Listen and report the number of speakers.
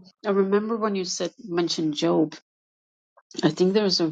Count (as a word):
one